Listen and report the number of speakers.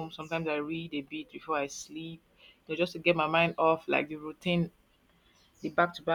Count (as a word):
one